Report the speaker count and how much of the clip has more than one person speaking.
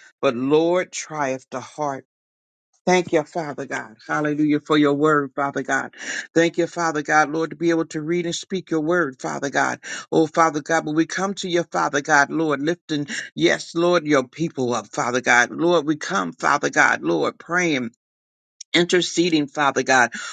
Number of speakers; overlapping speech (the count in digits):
1, no overlap